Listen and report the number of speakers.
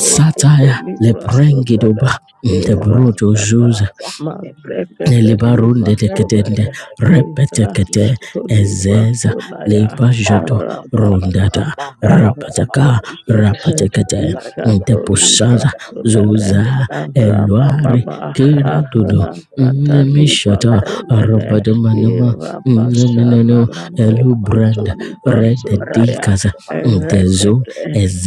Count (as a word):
three